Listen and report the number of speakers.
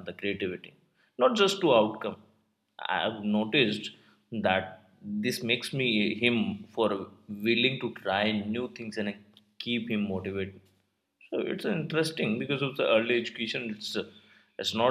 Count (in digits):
1